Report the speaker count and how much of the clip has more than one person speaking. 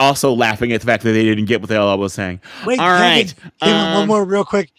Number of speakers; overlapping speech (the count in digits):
2, about 21%